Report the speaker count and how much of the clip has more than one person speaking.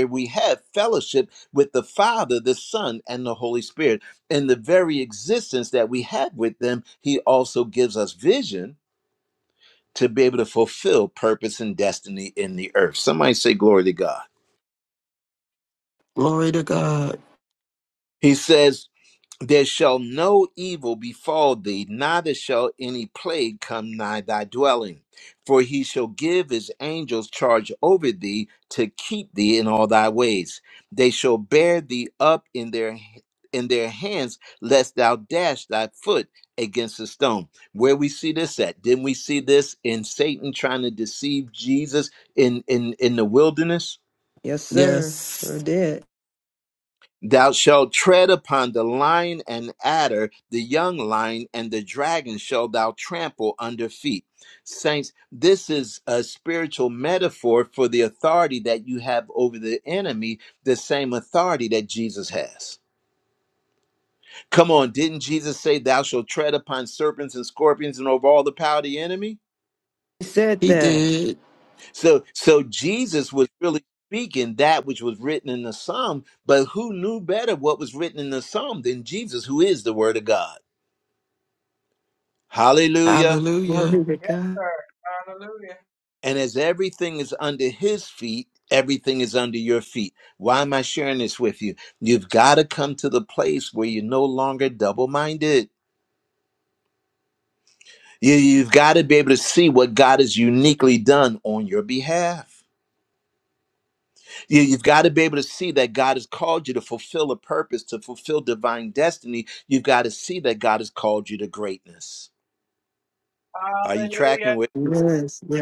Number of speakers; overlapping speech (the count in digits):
4, about 3%